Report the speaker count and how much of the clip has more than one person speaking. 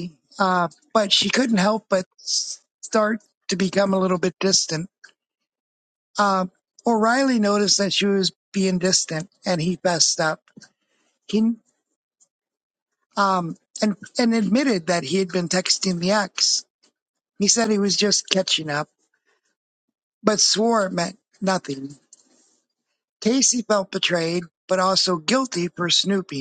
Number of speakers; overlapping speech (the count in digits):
1, no overlap